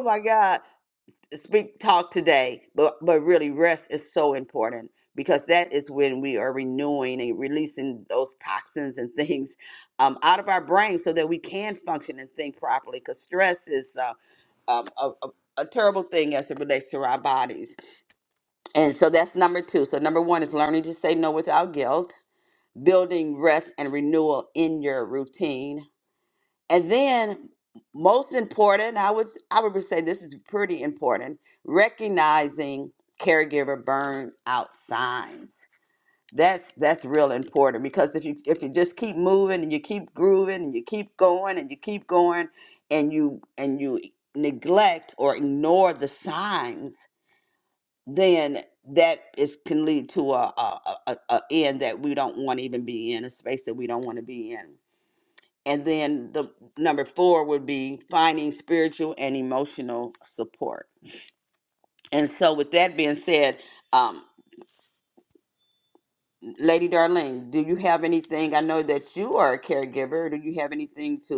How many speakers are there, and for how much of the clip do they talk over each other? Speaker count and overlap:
one, no overlap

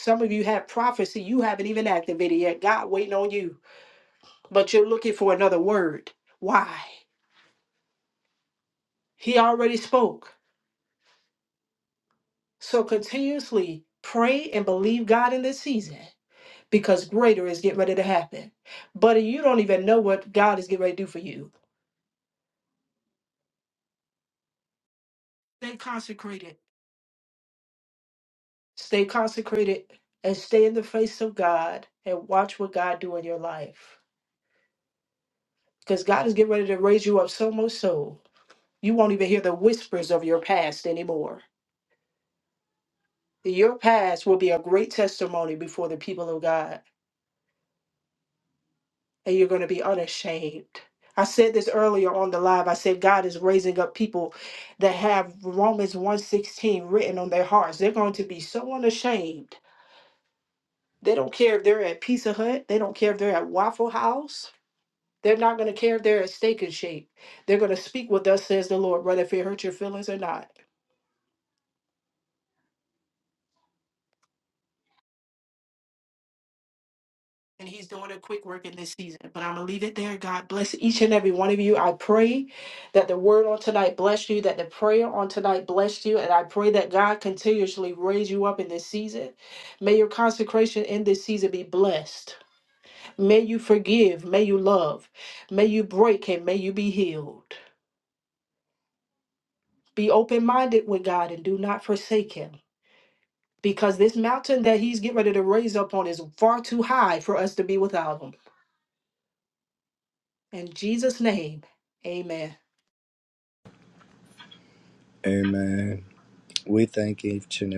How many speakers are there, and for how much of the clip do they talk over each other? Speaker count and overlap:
two, no overlap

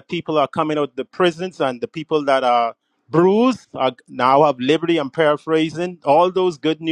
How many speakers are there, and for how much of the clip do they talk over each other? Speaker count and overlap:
one, no overlap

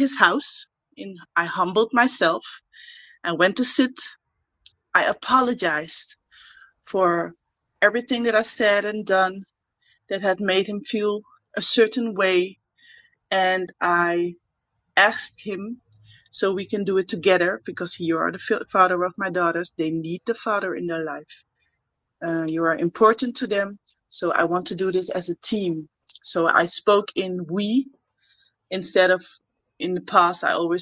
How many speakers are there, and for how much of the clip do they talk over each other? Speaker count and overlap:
one, no overlap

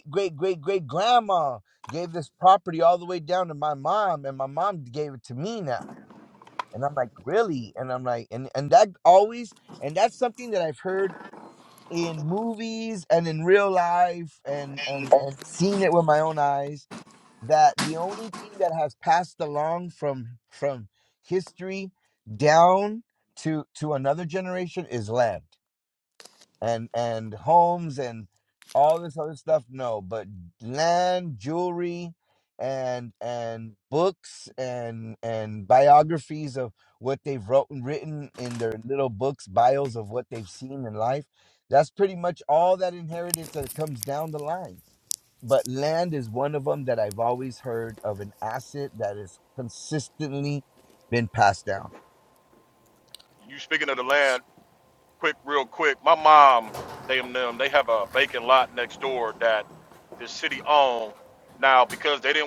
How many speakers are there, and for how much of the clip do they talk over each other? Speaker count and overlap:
two, no overlap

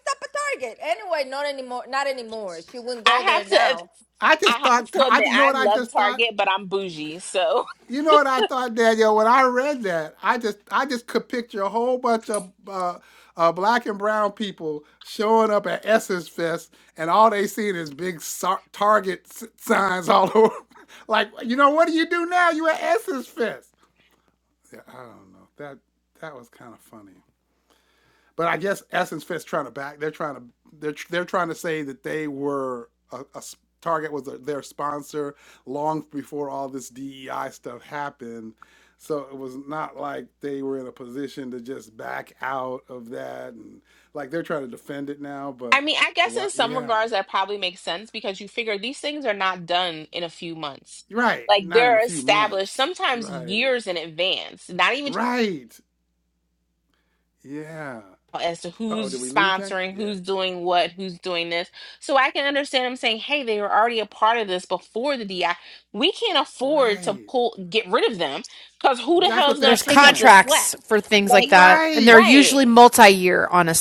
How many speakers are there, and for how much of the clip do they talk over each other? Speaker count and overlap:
four, about 13%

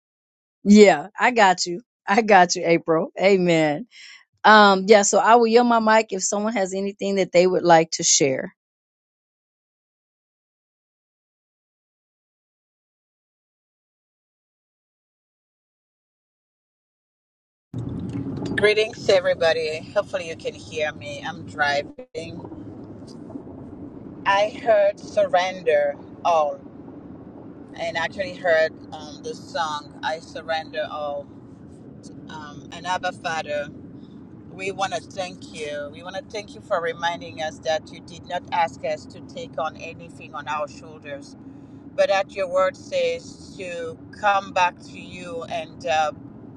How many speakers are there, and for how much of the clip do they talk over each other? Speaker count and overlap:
two, no overlap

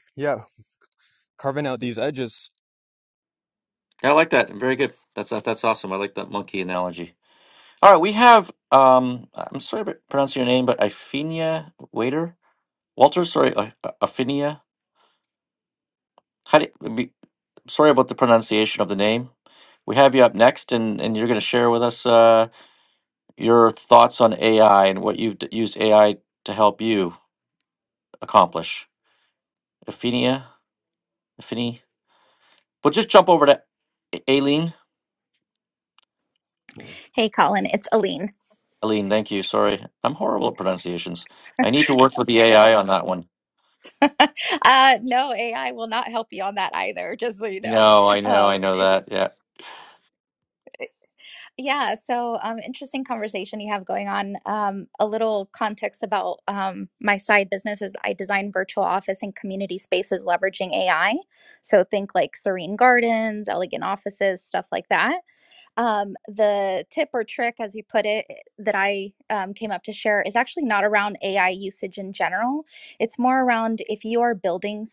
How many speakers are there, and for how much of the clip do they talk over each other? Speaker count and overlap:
three, about 2%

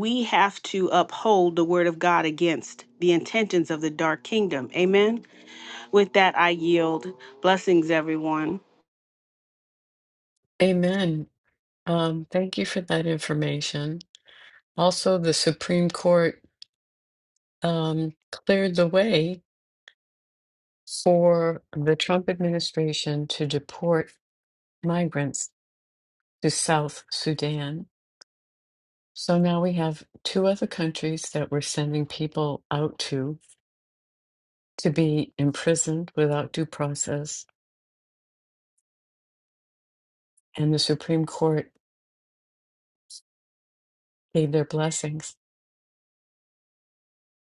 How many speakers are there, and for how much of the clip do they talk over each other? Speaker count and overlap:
two, no overlap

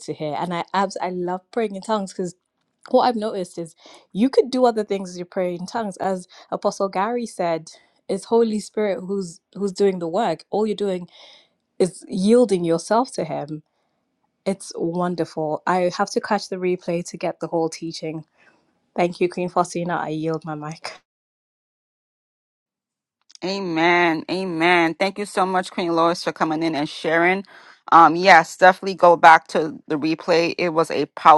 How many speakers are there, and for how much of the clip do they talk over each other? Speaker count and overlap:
two, no overlap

